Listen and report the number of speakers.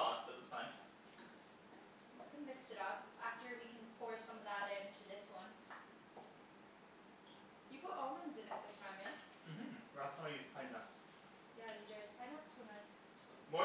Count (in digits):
2